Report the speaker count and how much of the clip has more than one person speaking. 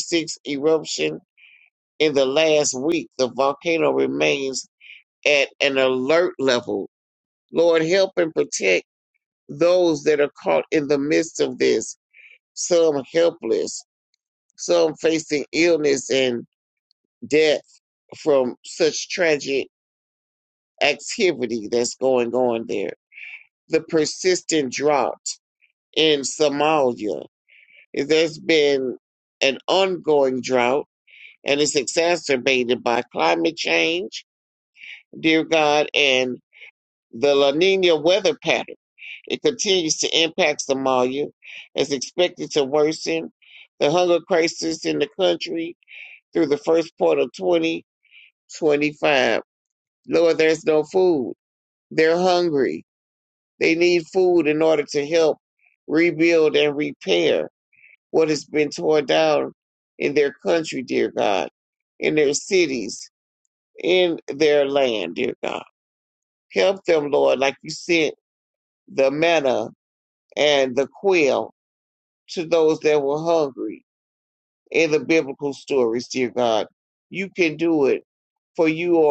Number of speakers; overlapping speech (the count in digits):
1, no overlap